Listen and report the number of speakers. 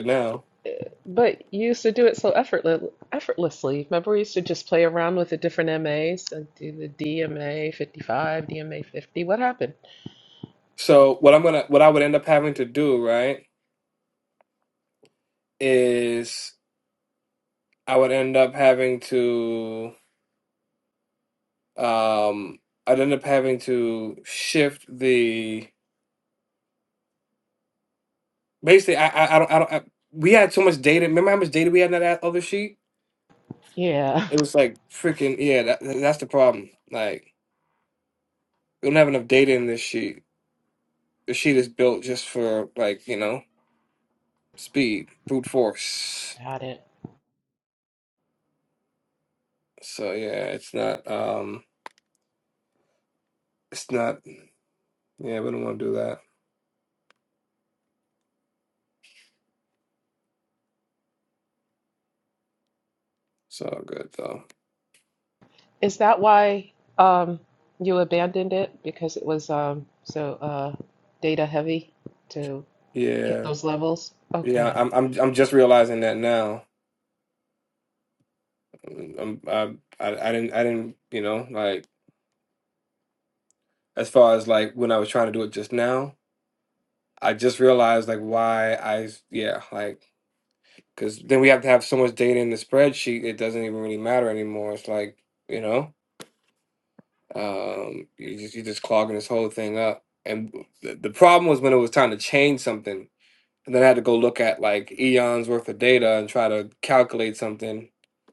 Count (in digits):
2